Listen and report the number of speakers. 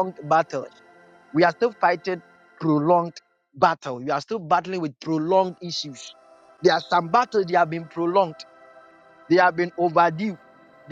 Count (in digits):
1